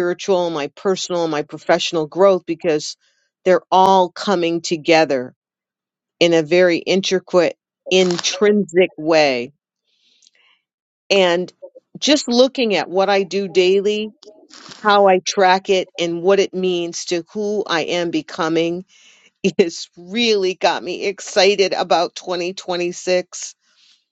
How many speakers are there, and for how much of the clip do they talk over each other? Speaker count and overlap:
one, no overlap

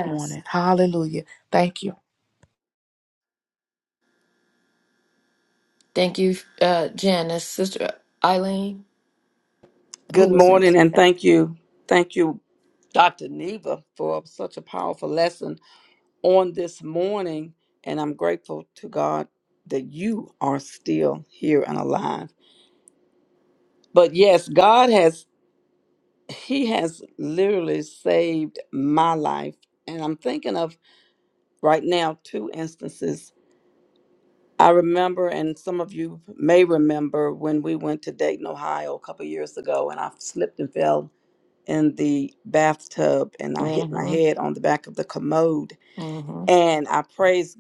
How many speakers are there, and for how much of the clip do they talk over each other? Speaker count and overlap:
three, about 3%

